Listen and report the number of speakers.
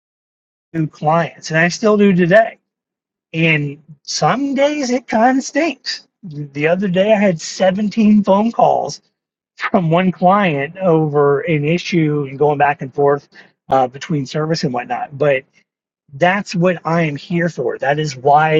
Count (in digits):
1